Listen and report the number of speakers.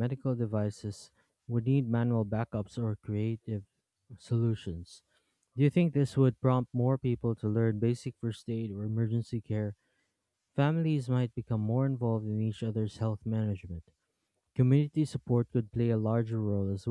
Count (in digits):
1